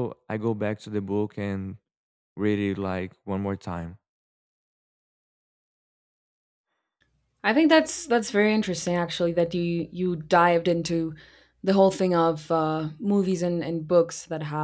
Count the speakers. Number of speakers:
2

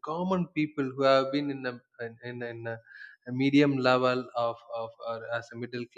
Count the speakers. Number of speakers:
1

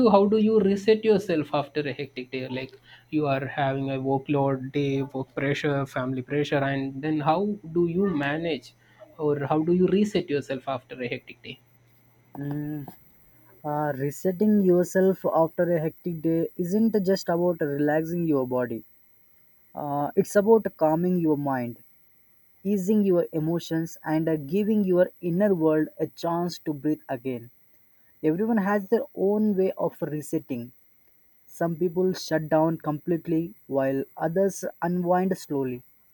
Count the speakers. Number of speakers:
2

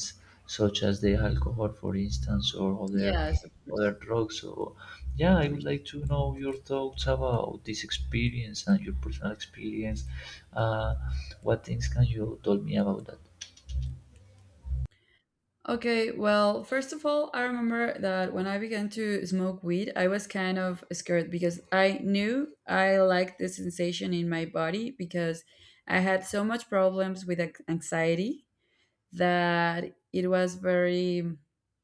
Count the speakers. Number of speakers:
2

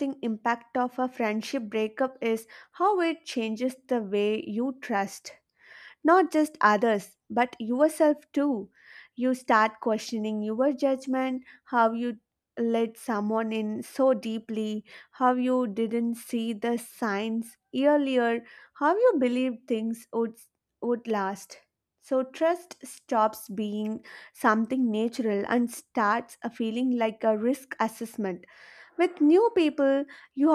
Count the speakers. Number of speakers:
1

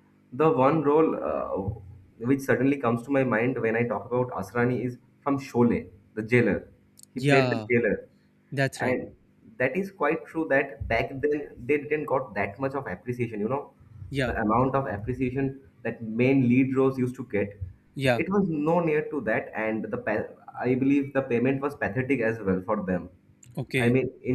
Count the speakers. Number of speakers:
2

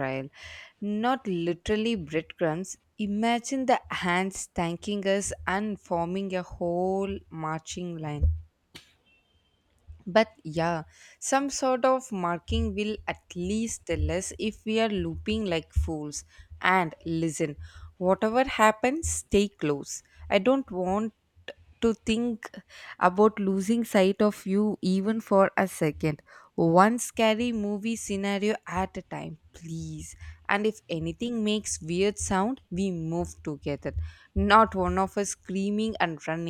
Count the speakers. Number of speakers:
1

